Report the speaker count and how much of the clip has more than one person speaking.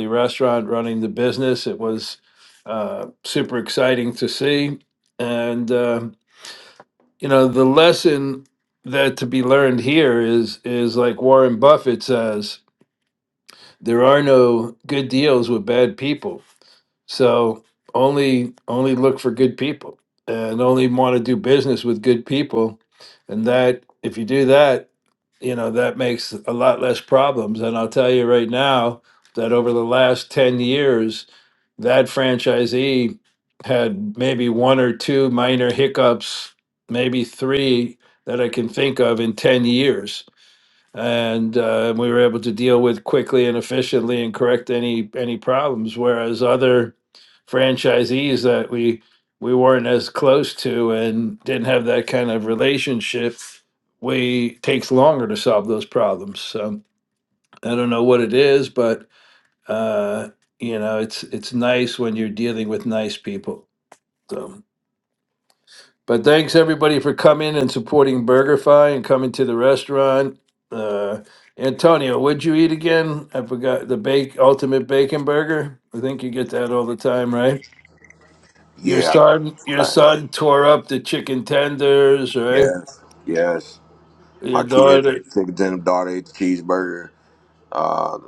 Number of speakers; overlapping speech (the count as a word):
two, about 2%